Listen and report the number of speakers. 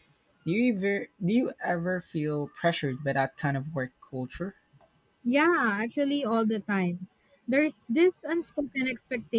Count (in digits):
2